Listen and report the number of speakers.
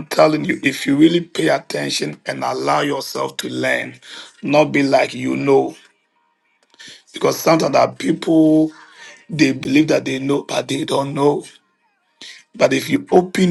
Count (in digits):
1